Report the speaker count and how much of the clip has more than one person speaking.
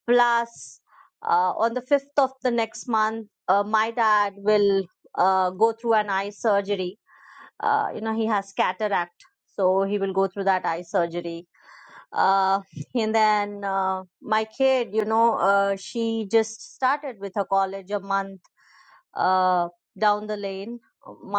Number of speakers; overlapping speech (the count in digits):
1, no overlap